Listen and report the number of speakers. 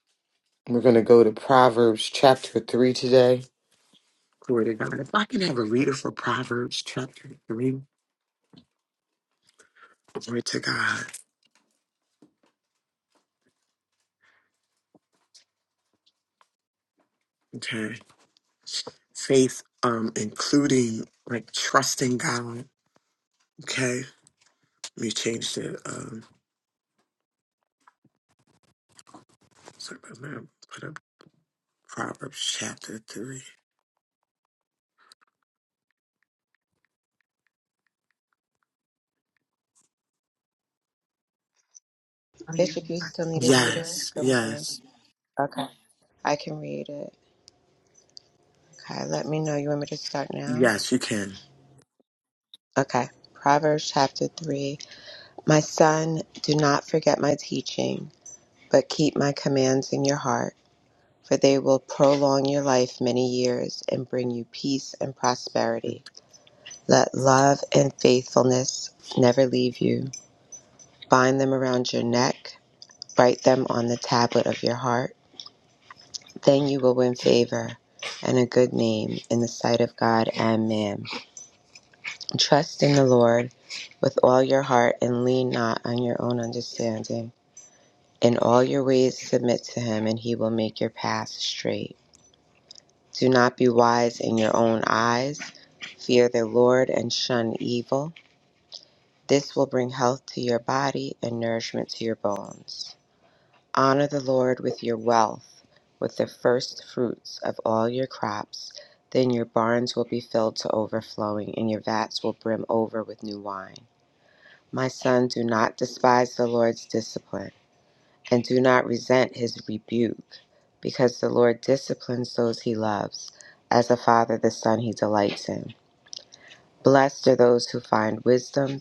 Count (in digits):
2